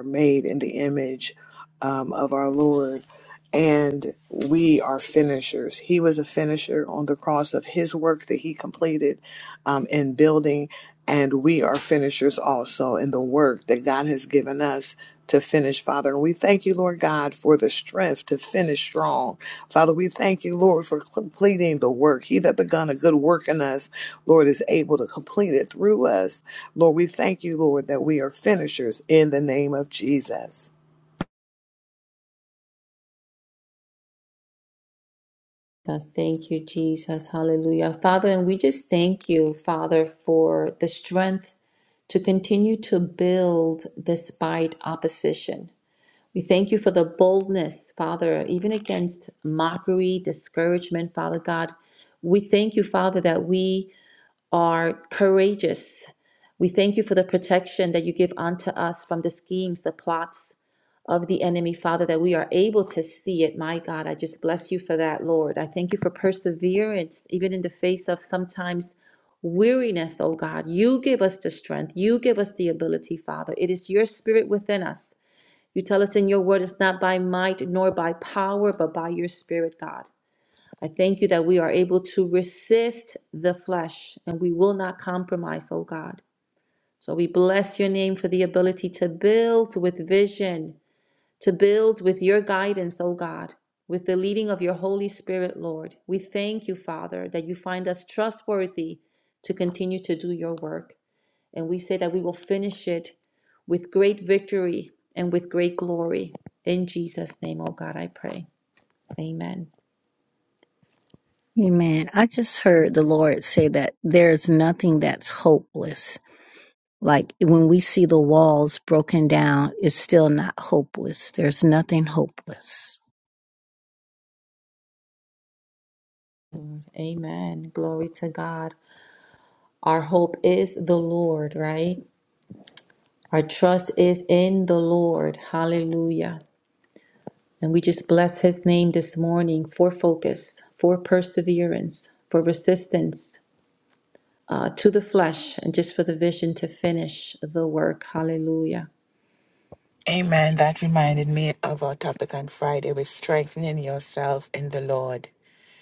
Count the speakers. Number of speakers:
four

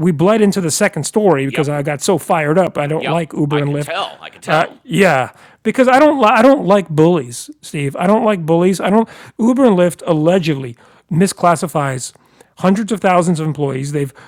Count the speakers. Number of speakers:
two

